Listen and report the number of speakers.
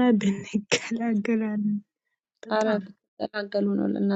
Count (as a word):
two